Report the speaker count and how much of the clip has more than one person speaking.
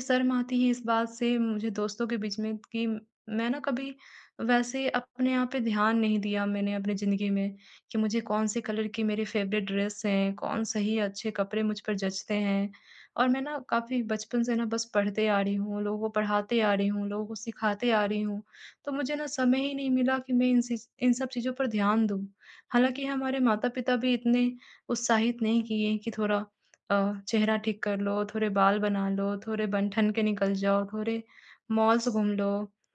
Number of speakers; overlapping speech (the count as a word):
one, no overlap